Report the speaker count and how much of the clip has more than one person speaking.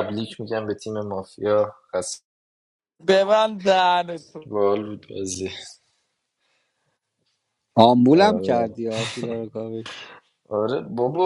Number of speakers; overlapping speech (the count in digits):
3, about 5%